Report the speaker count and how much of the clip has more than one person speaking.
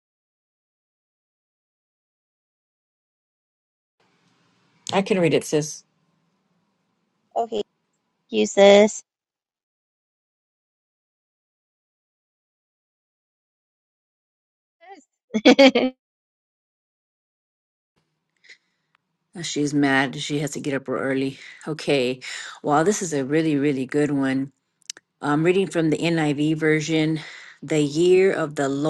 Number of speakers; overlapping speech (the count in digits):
2, no overlap